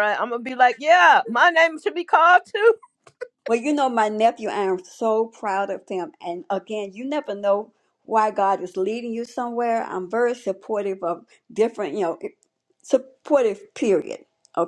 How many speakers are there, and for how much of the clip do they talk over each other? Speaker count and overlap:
2, no overlap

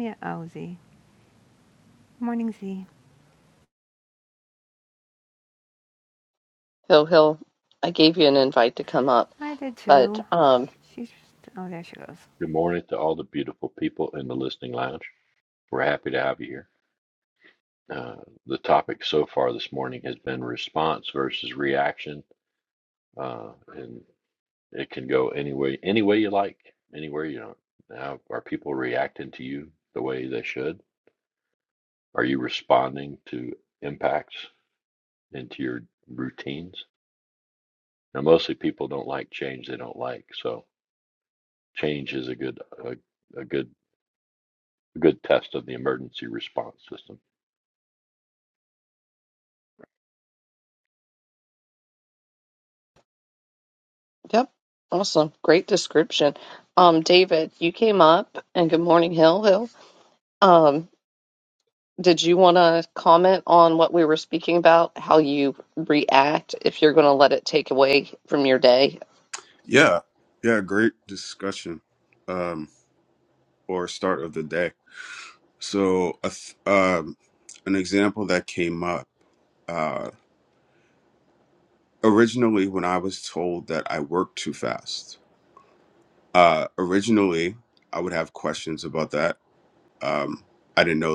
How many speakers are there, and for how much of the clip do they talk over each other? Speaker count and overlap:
4, under 1%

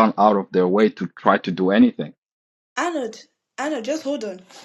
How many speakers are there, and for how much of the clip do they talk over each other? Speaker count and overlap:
2, no overlap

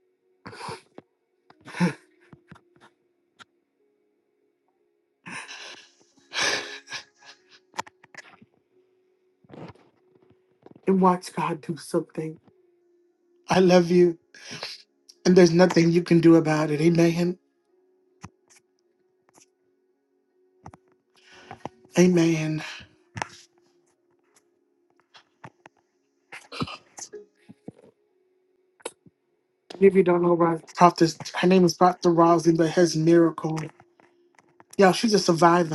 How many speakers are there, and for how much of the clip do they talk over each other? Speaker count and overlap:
1, no overlap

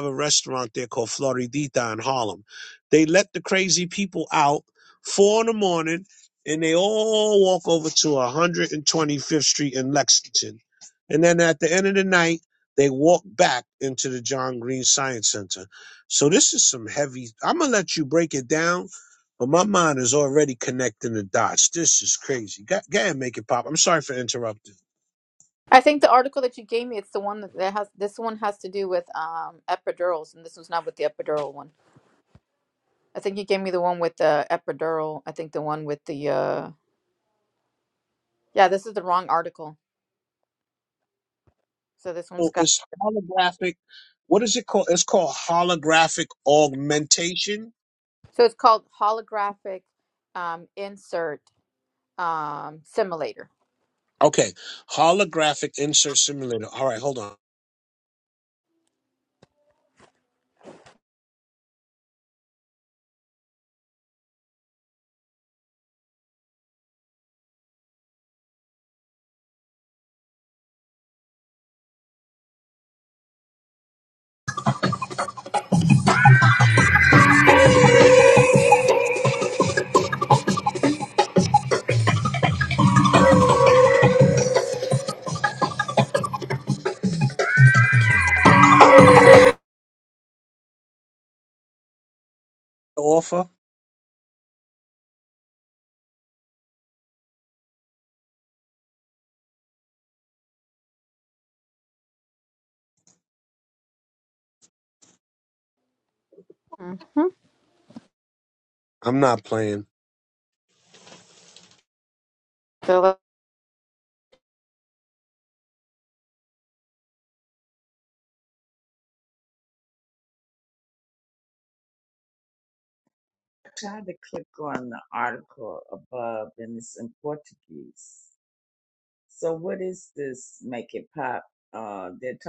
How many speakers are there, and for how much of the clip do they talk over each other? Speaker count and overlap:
3, under 1%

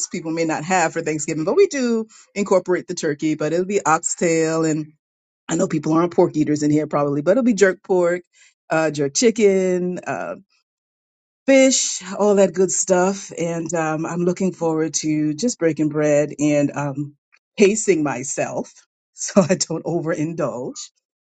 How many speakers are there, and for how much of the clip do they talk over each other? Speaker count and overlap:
1, no overlap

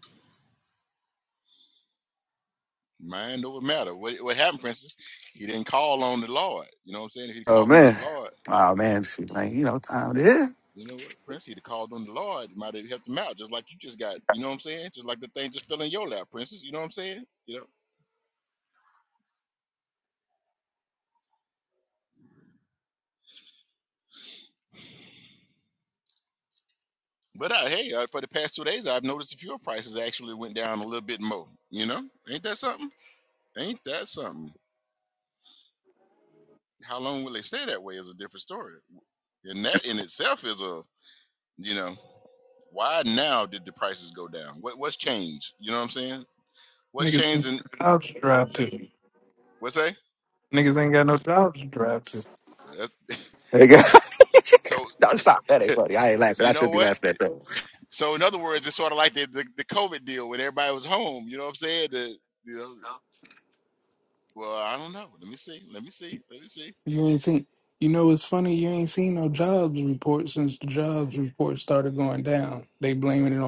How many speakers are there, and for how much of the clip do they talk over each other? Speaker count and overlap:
3, about 2%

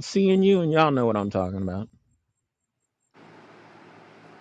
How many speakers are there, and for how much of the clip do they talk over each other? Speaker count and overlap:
1, no overlap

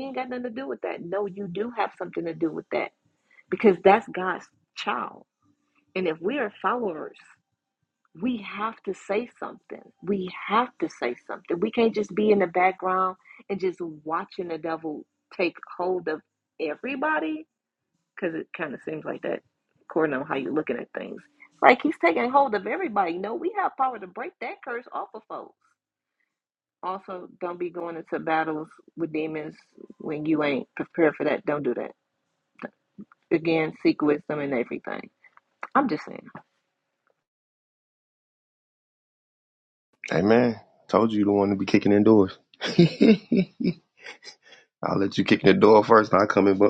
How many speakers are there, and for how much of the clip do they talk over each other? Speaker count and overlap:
2, no overlap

